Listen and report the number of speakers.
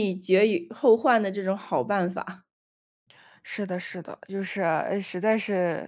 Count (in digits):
2